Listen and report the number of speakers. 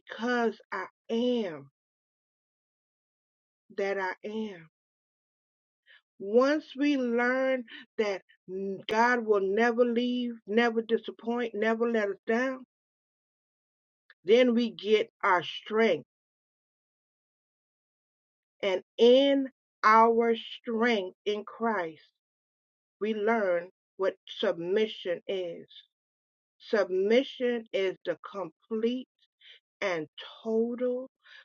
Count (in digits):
1